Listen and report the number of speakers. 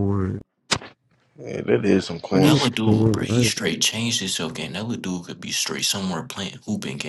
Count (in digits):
3